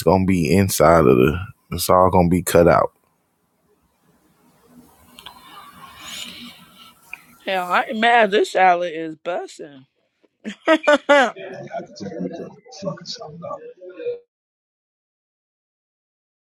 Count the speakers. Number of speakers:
three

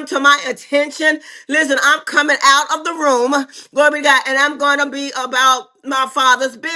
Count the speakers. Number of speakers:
one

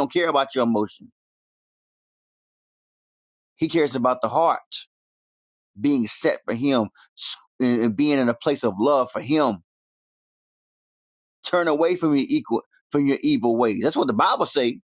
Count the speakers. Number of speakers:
one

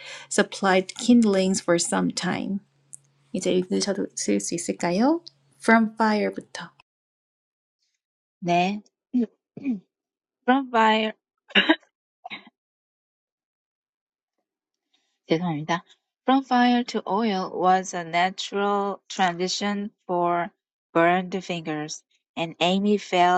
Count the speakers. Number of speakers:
two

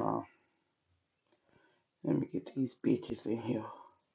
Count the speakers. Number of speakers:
one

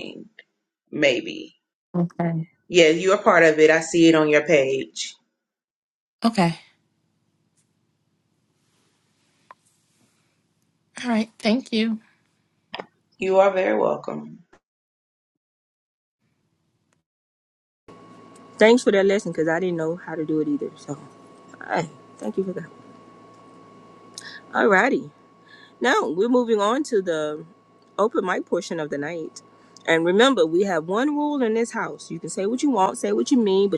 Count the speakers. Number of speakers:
three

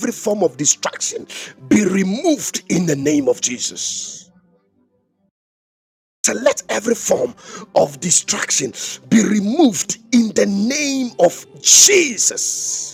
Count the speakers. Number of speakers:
one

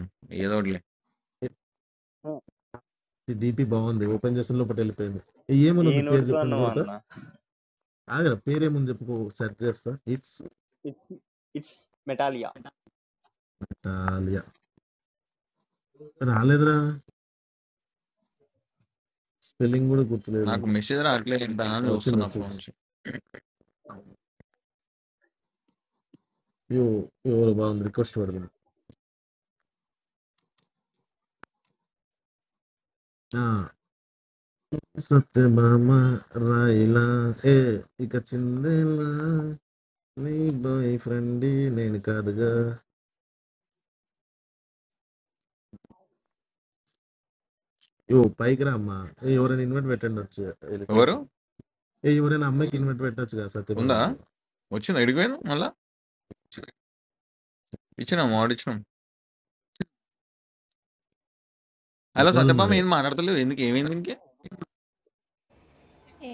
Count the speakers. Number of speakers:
three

